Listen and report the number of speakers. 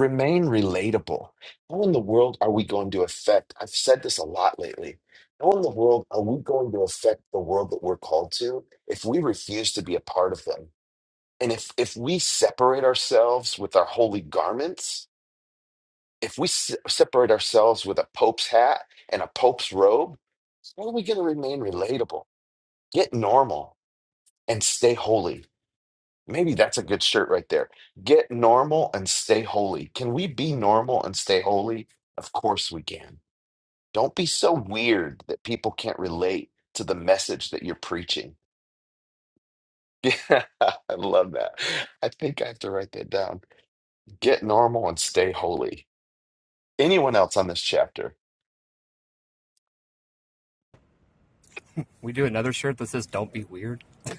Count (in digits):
2